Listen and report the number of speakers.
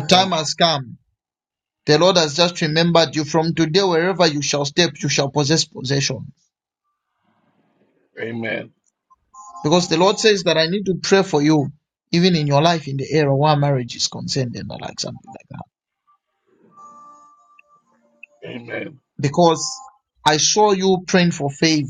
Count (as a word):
two